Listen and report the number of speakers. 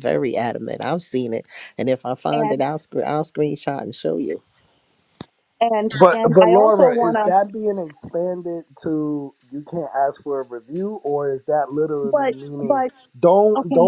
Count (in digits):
3